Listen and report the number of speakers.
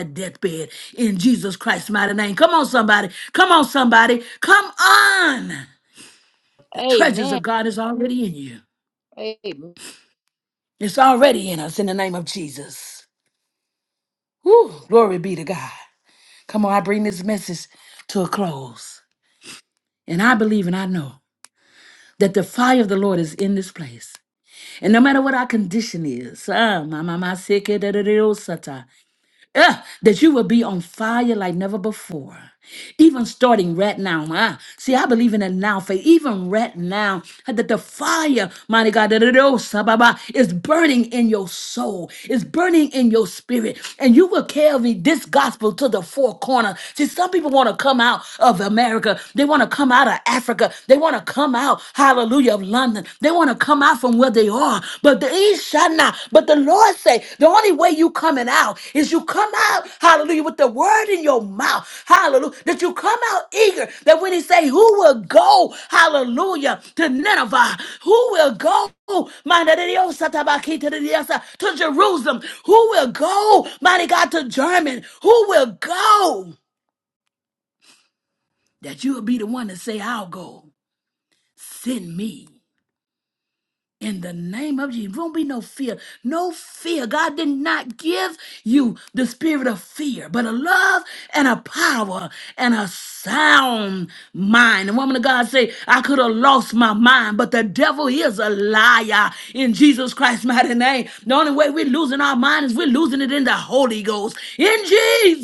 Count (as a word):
two